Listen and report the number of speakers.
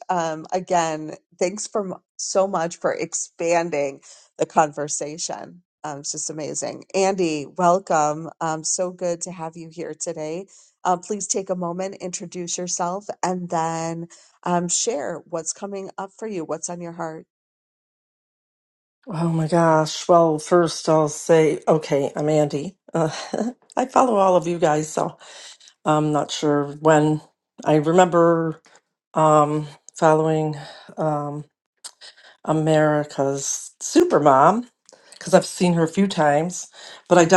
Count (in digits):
2